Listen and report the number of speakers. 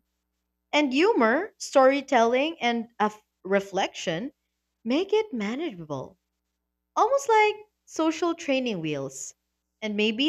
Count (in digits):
1